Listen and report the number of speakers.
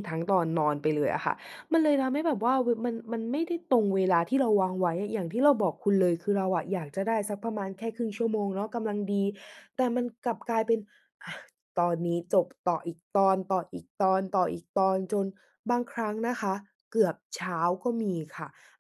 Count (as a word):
one